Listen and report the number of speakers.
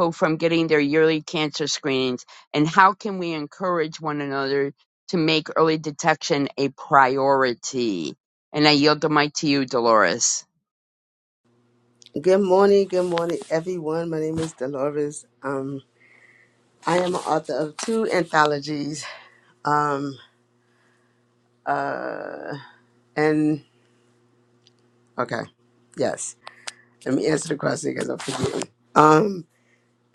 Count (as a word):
two